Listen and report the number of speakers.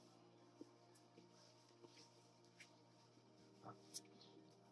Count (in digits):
0